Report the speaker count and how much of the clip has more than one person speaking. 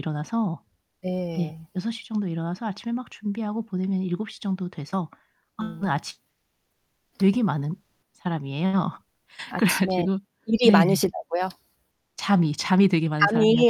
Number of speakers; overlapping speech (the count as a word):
two, about 11%